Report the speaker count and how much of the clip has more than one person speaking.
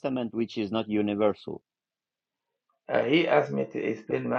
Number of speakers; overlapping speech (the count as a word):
two, no overlap